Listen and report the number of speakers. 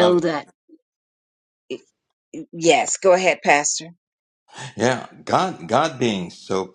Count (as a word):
two